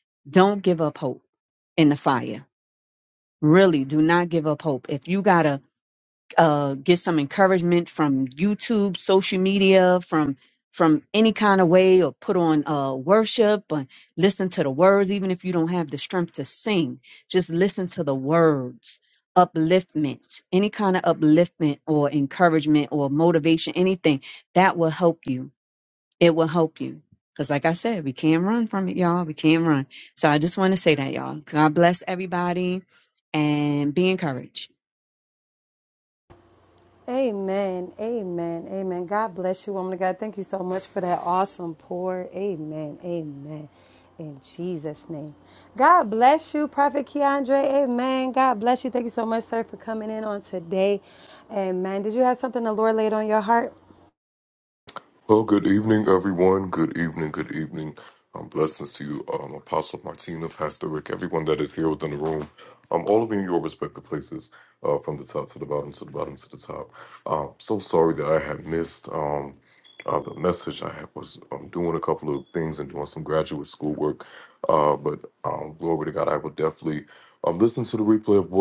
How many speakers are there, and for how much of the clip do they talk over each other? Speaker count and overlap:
3, no overlap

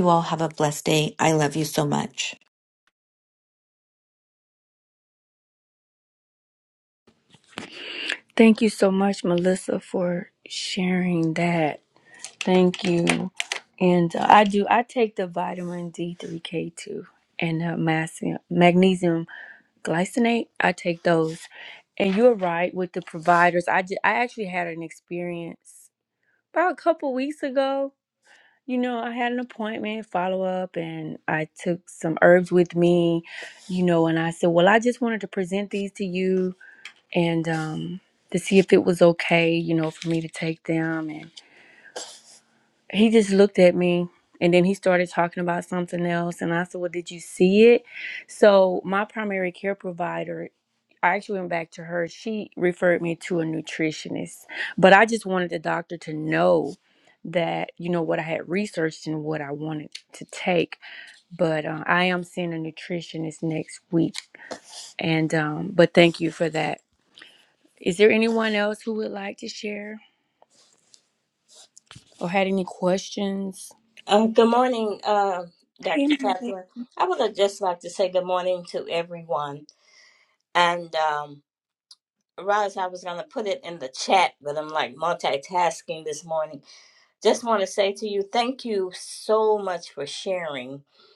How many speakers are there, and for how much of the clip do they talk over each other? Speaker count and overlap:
3, no overlap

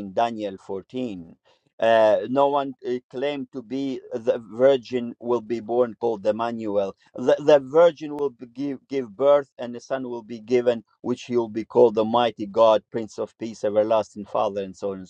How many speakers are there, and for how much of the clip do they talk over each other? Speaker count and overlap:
1, no overlap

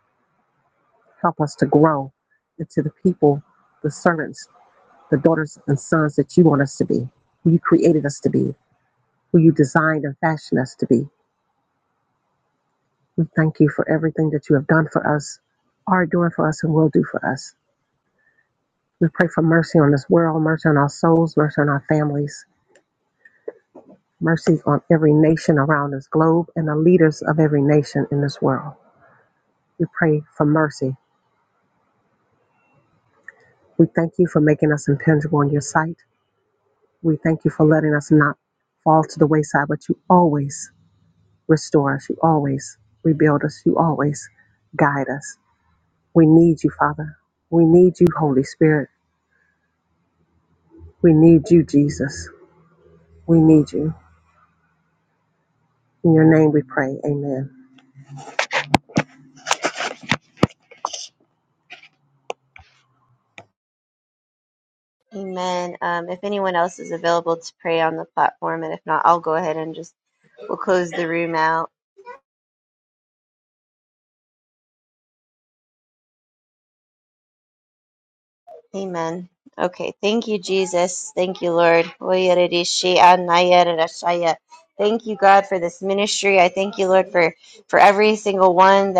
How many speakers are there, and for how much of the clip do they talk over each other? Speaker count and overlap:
2, no overlap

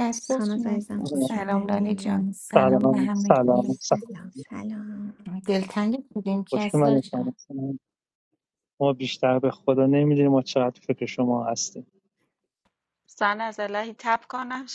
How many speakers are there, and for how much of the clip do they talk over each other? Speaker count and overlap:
4, about 23%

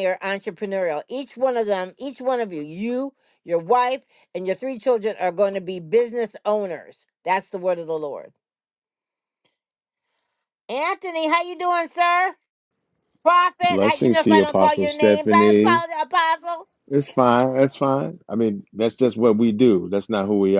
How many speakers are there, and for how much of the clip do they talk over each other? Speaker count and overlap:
2, about 11%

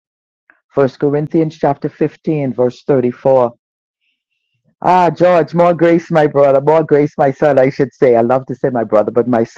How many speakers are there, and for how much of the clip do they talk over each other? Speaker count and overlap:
1, no overlap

